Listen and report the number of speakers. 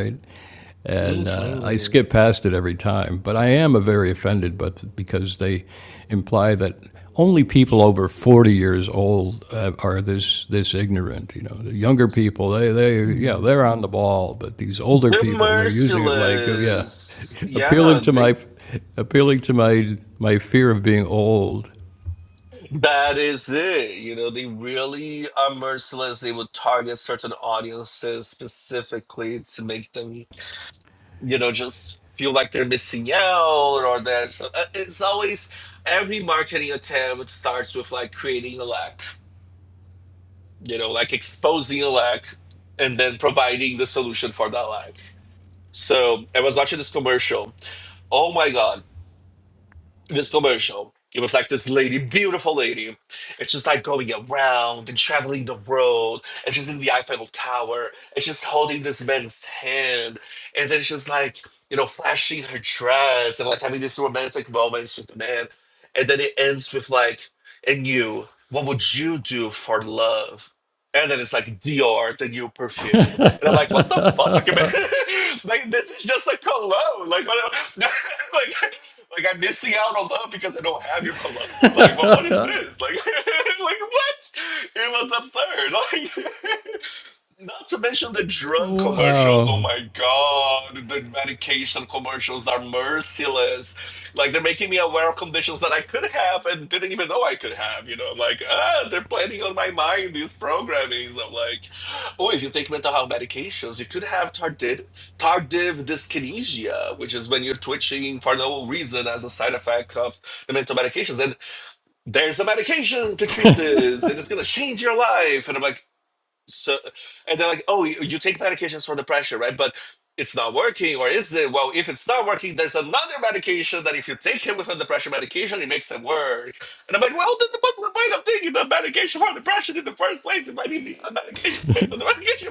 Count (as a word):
two